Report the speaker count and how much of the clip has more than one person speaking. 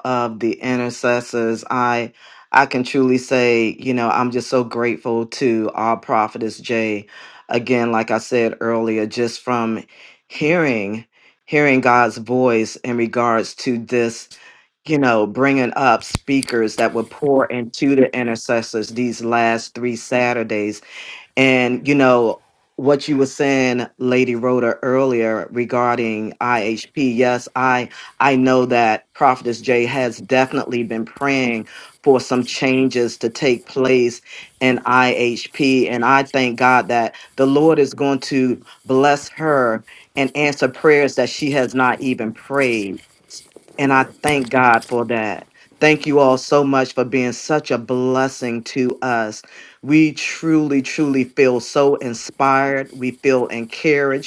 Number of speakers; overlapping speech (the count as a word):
one, no overlap